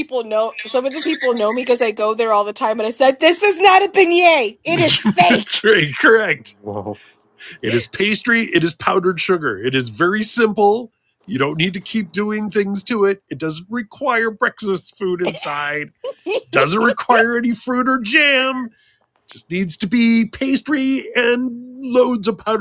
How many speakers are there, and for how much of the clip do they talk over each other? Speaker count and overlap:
two, about 4%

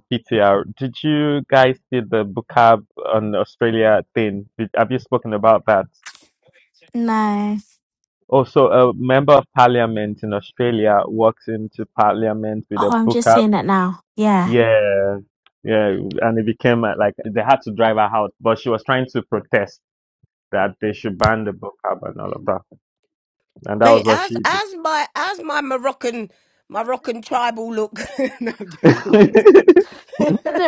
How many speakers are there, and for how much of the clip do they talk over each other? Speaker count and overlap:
three, about 5%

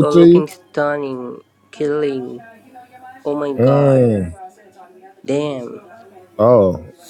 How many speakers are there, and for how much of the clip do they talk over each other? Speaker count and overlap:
two, about 13%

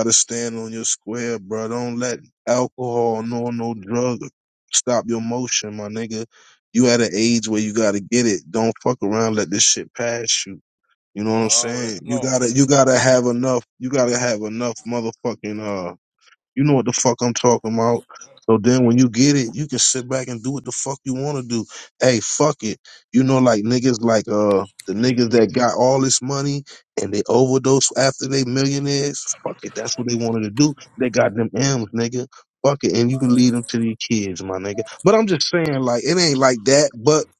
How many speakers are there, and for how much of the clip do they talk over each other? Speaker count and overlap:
one, no overlap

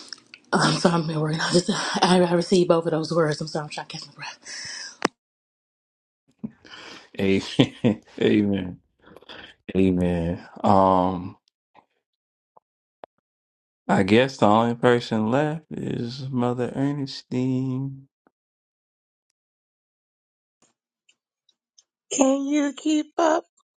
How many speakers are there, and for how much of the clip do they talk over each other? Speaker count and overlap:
three, no overlap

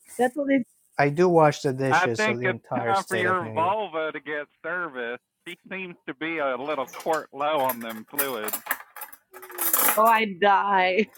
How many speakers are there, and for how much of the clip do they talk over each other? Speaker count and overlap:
three, about 16%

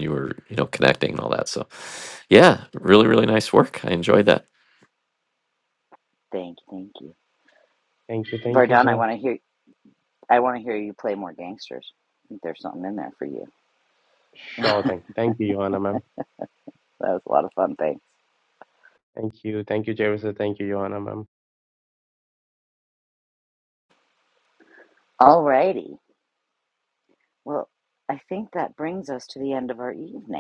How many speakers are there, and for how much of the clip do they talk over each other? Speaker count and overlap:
three, about 3%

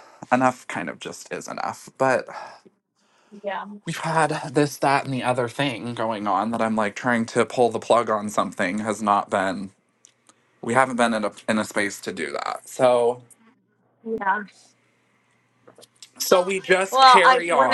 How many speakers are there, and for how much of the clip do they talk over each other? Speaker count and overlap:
two, about 5%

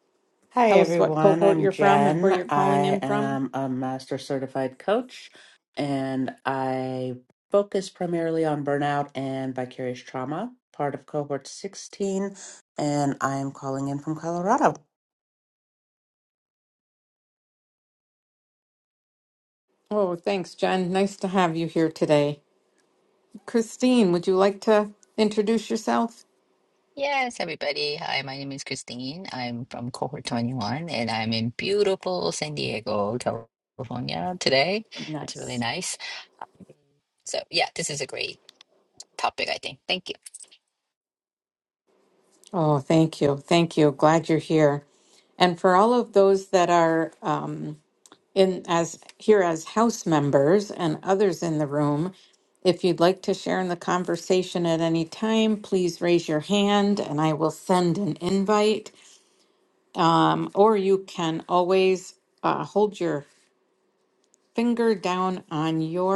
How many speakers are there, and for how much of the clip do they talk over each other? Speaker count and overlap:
three, about 4%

